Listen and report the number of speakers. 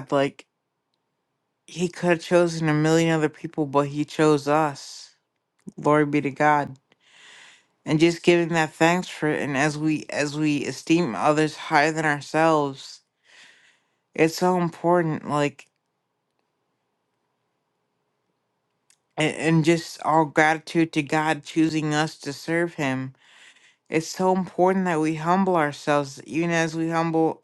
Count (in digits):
1